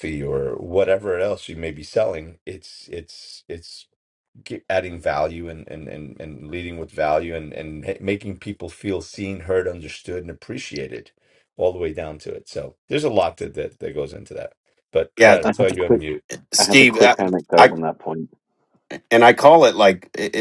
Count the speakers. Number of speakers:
three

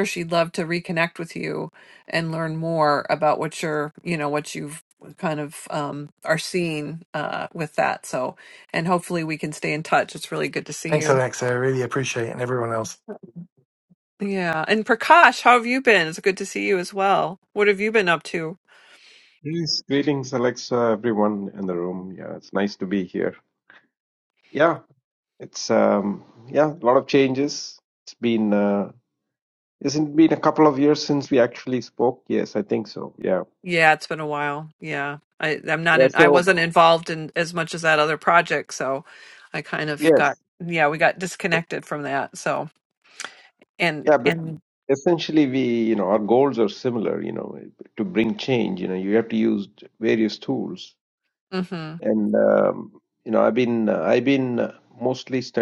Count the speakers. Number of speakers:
three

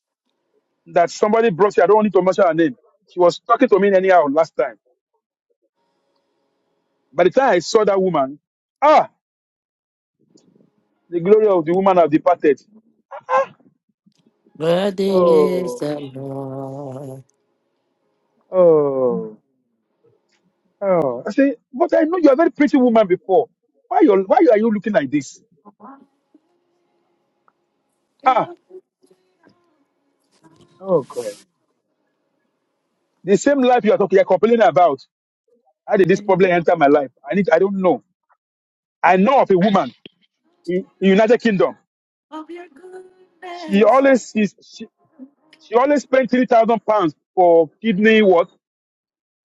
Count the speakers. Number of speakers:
two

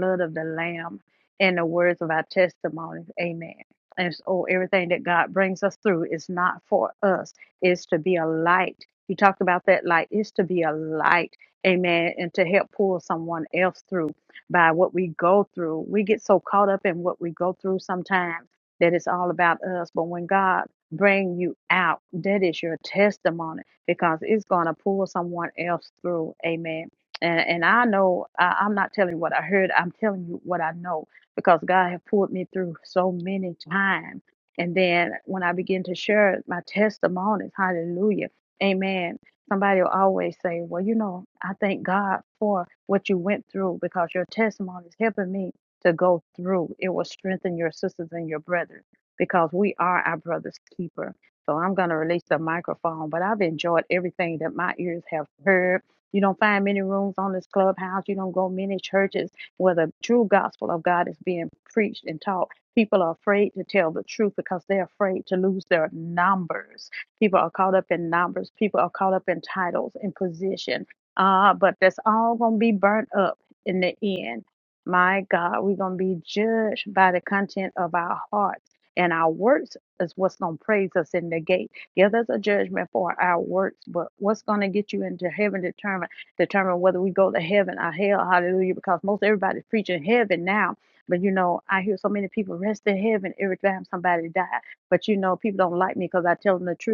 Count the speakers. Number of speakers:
one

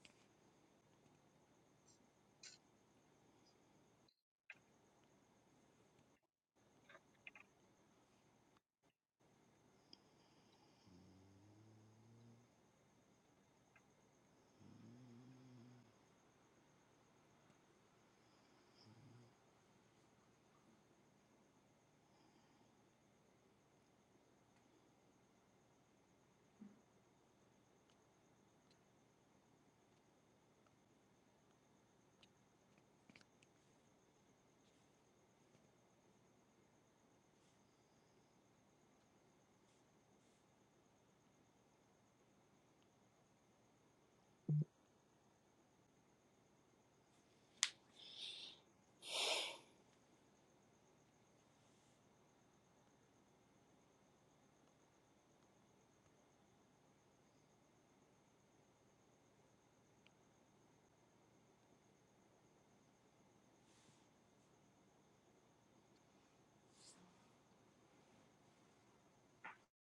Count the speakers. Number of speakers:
zero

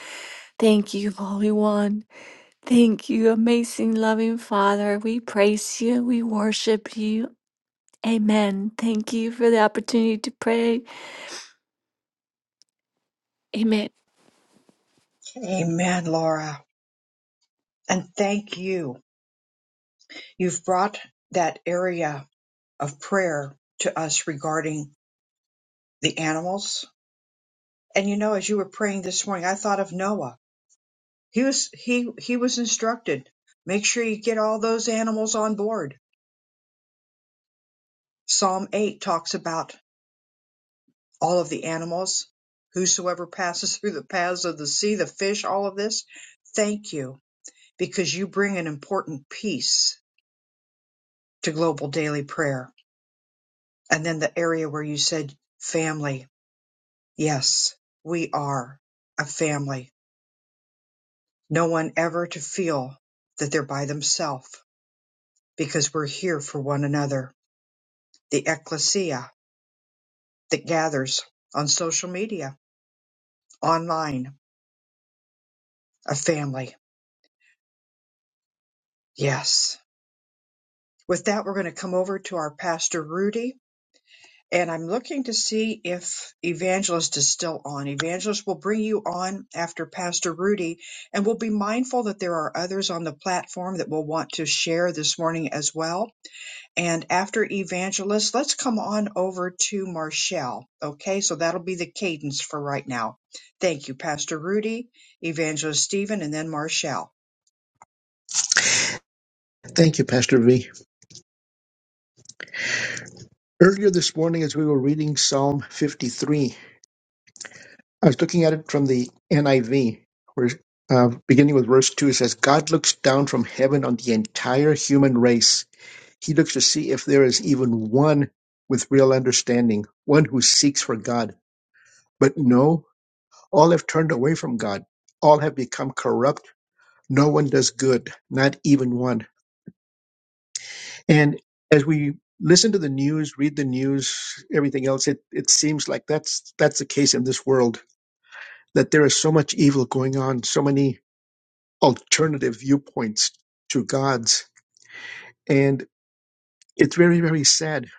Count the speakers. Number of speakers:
three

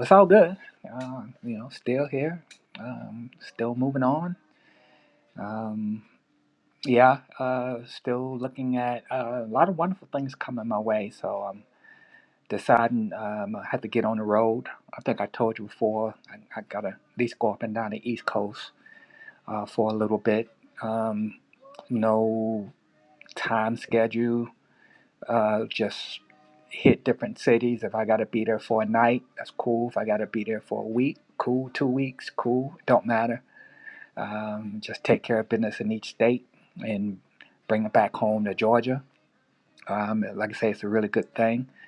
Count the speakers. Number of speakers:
one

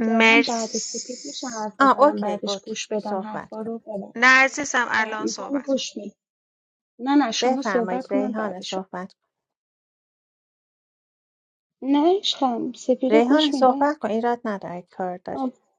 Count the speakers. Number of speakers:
three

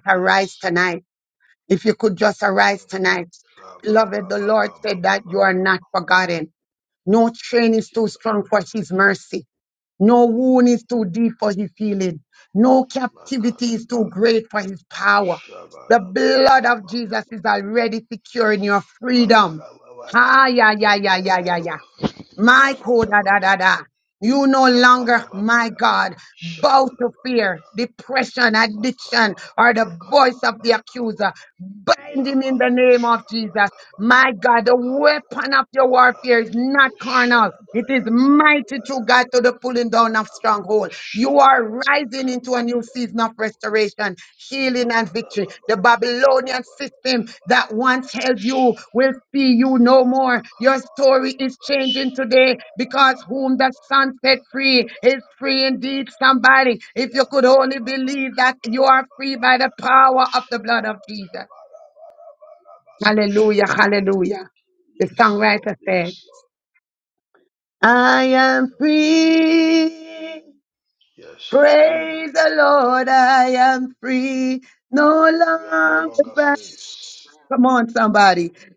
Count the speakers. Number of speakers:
two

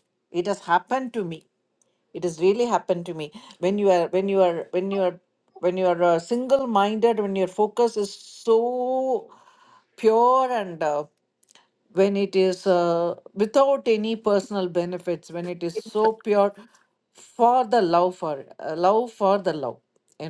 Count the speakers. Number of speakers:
one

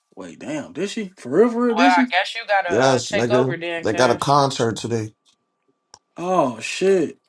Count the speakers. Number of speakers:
three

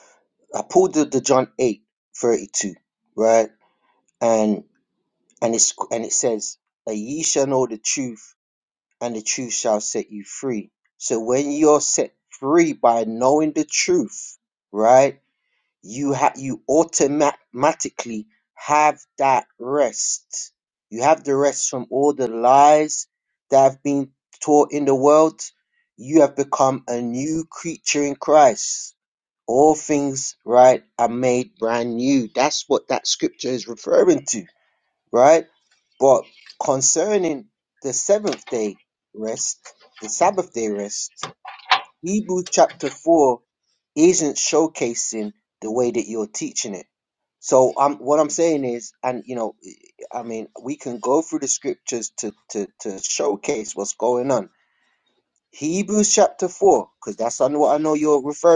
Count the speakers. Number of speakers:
one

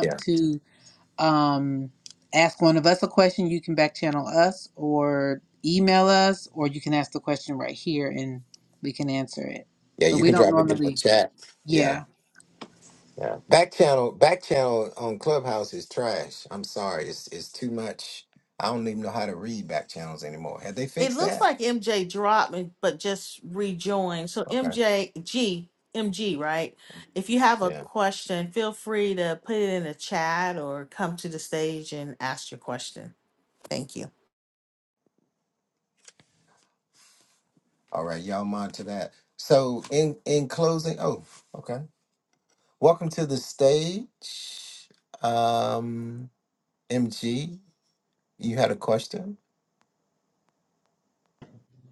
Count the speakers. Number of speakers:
three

